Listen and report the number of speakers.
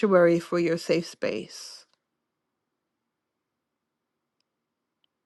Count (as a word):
one